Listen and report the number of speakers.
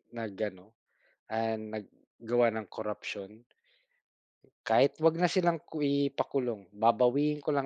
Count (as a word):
one